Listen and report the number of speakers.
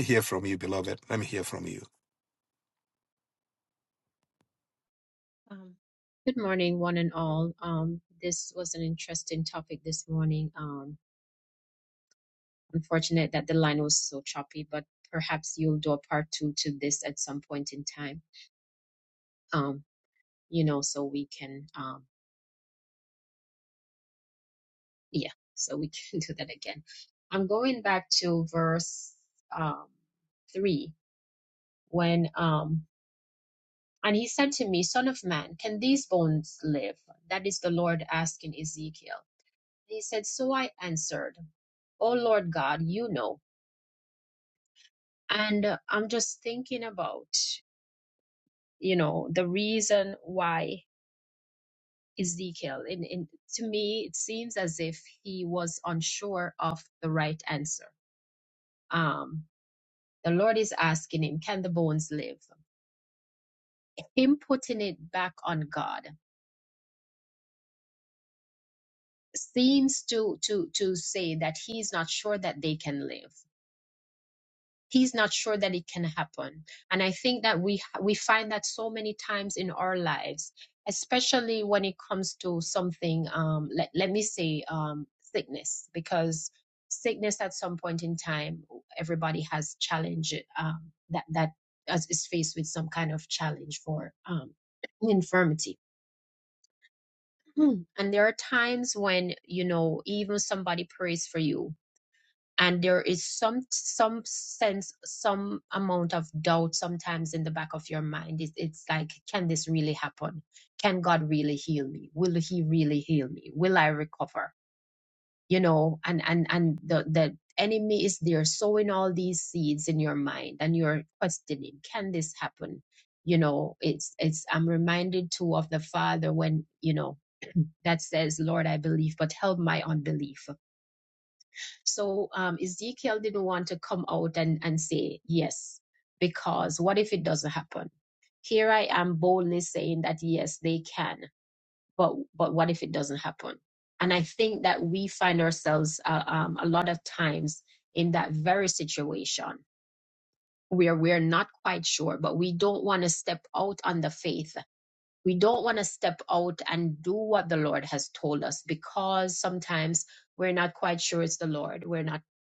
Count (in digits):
2